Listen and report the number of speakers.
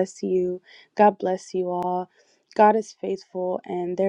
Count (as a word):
one